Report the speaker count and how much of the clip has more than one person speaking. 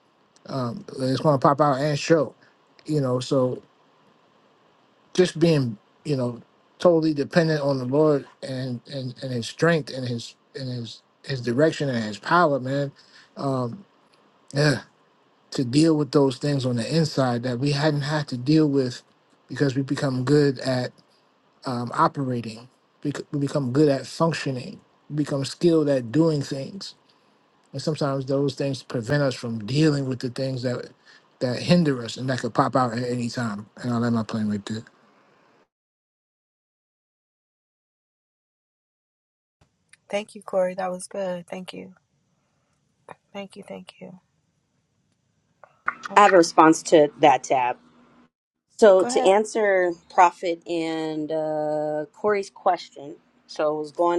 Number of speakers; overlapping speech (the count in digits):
3, about 1%